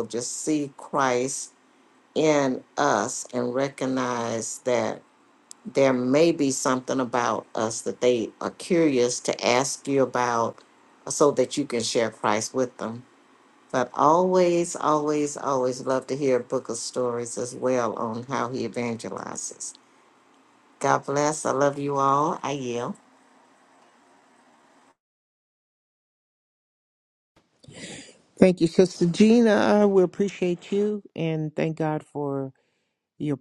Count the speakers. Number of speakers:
two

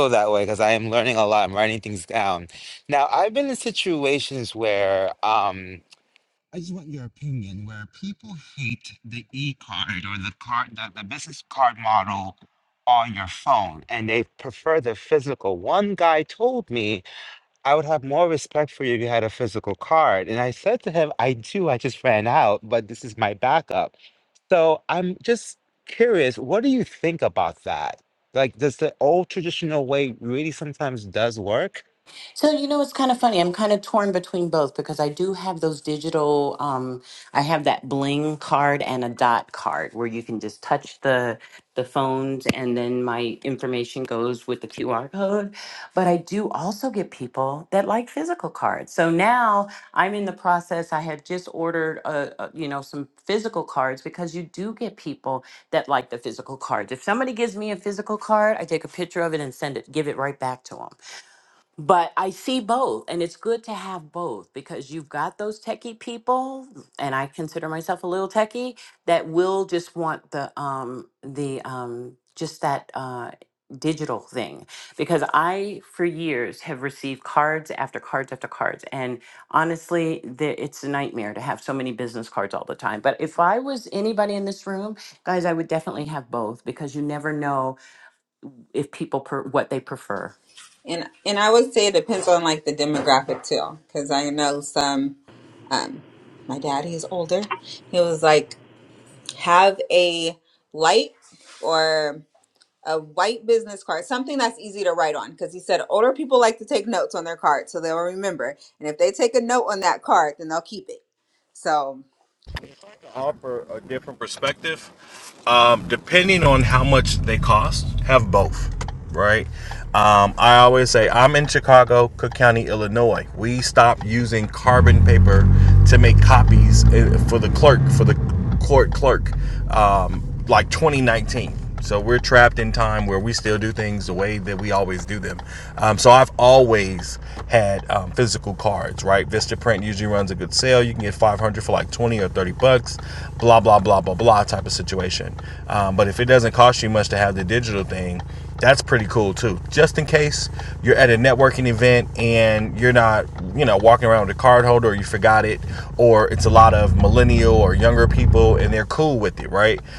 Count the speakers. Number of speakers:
four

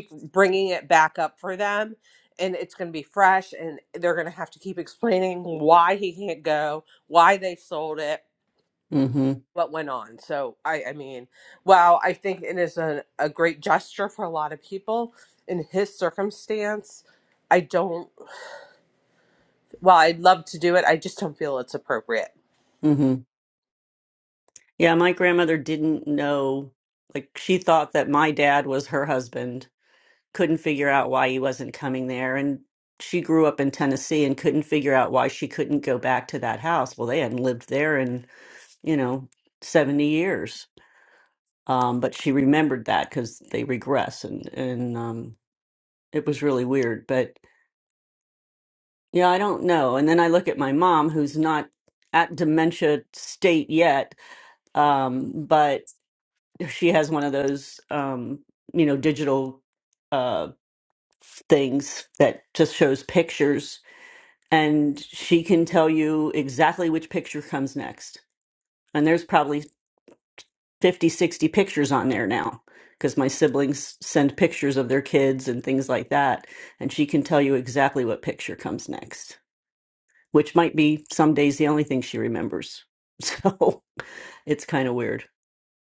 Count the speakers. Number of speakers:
two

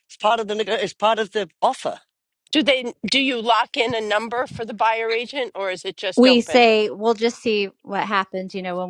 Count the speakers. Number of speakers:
three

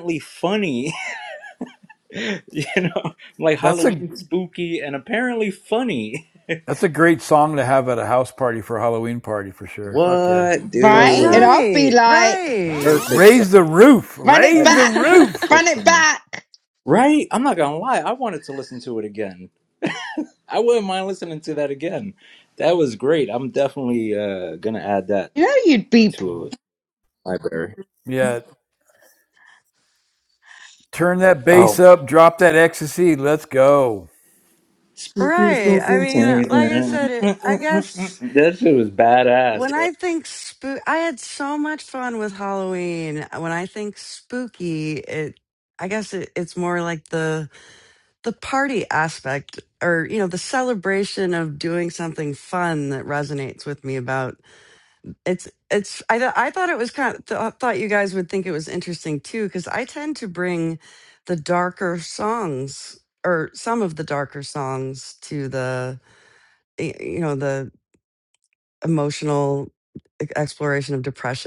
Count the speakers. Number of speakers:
four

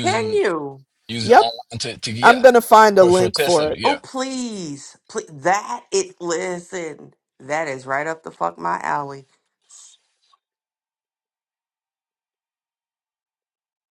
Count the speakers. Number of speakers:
three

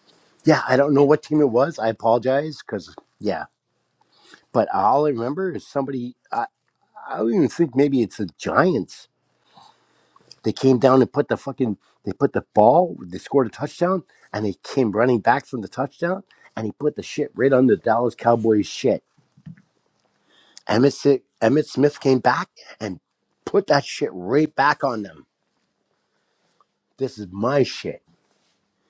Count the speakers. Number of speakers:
one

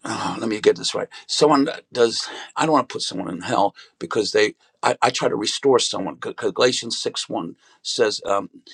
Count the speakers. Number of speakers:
one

